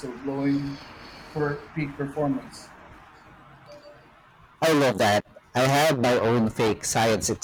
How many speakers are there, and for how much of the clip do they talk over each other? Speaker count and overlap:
2, no overlap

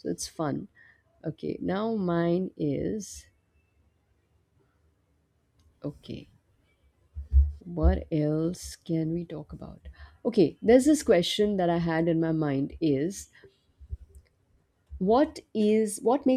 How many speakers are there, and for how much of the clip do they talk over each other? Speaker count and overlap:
1, no overlap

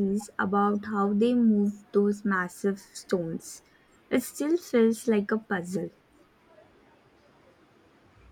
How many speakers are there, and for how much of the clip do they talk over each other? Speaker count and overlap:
1, no overlap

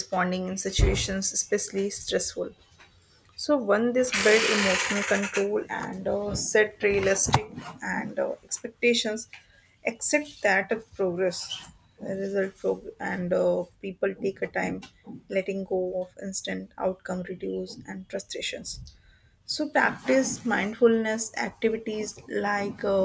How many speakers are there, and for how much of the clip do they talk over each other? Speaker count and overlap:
1, no overlap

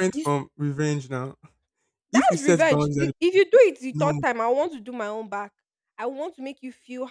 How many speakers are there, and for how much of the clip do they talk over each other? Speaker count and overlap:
2, about 20%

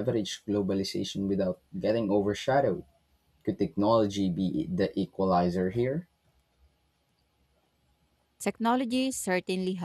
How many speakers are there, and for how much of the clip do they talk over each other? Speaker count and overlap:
2, no overlap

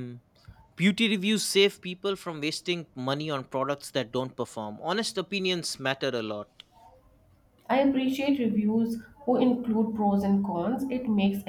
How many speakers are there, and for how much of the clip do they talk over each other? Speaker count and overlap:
2, no overlap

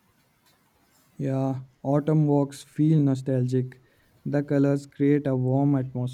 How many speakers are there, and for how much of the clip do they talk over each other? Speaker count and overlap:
1, no overlap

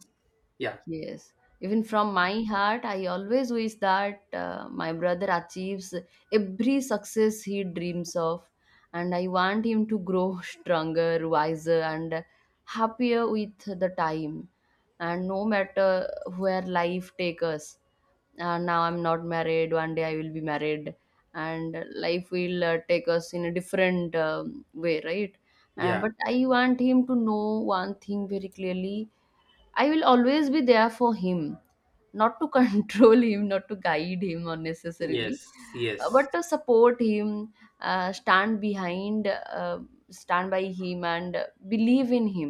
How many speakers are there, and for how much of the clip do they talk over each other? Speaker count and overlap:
2, about 1%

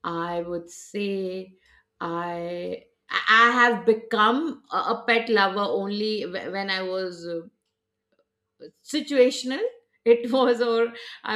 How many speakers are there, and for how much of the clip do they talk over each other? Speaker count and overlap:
1, no overlap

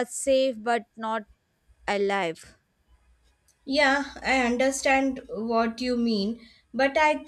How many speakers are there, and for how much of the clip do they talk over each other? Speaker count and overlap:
2, no overlap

